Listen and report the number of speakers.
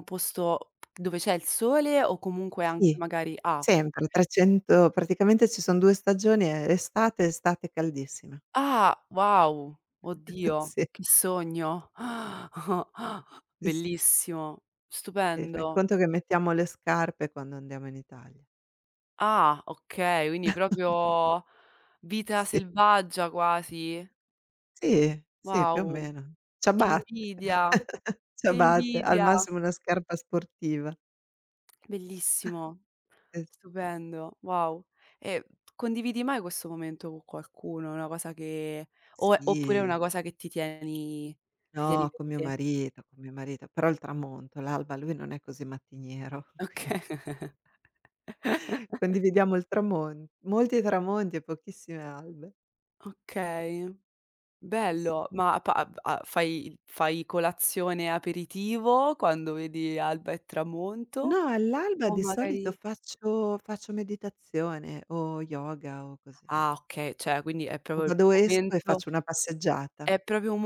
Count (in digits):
2